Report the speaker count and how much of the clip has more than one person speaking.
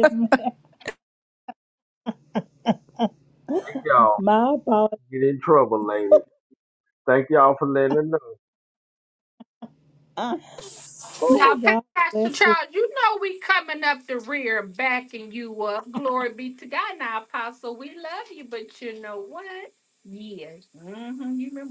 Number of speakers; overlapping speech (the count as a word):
three, about 5%